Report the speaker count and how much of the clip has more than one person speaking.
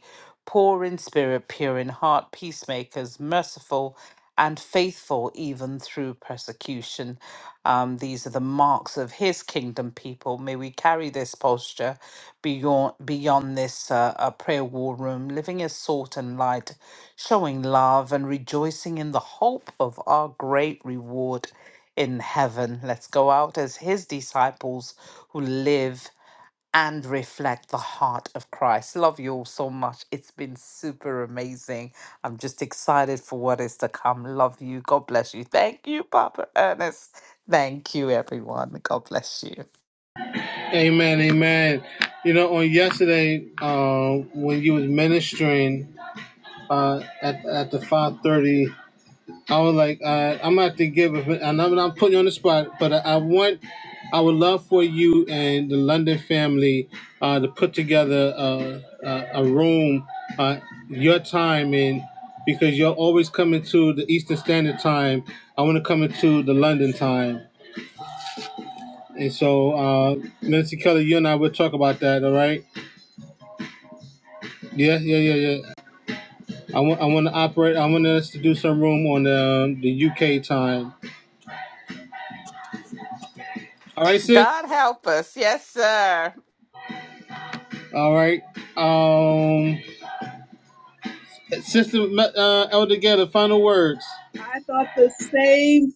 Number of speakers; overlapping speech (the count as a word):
three, under 1%